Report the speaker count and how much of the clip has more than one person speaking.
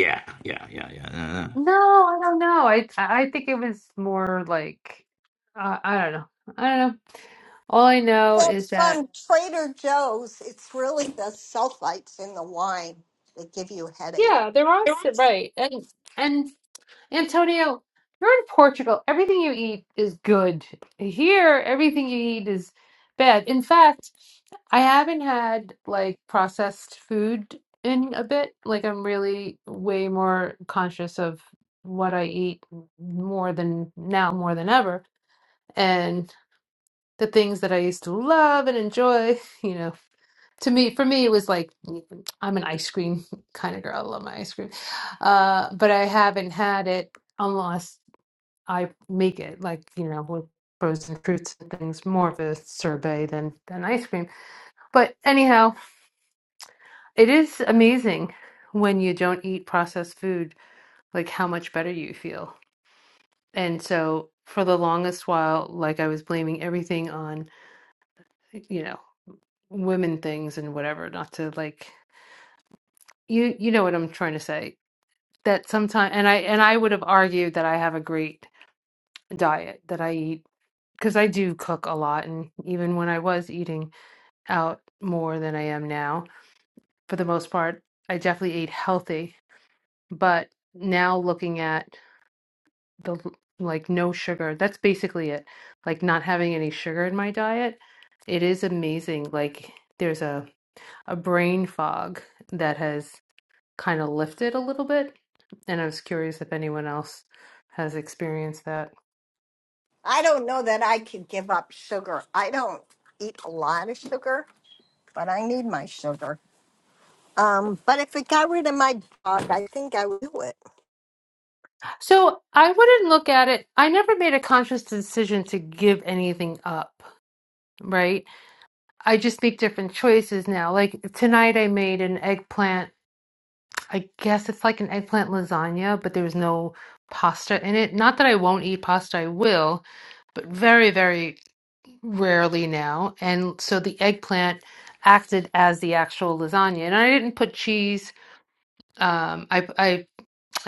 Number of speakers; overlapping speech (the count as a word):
three, about 1%